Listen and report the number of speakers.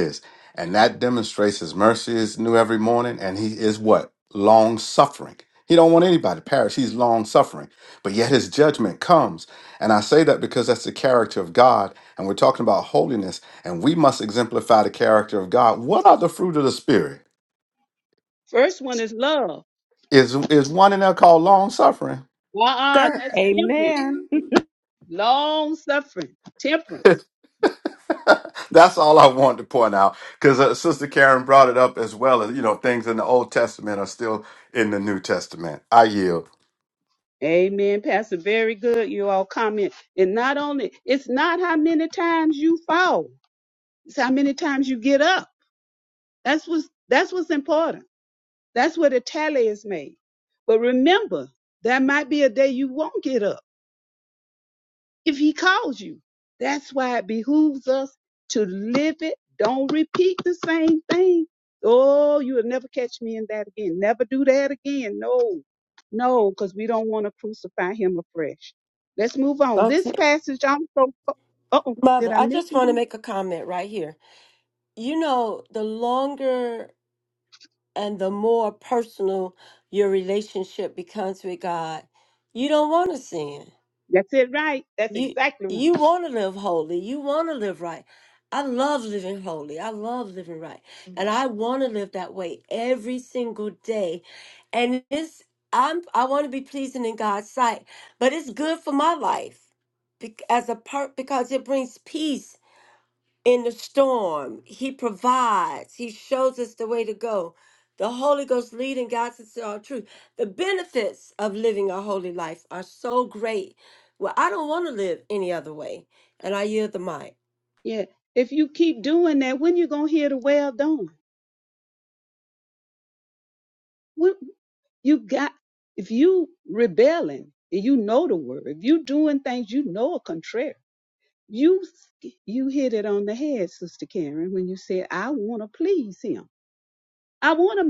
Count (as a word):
four